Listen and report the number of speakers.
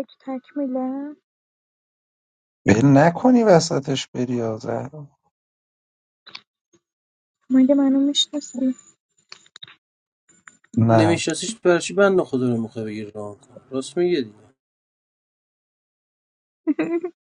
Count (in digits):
3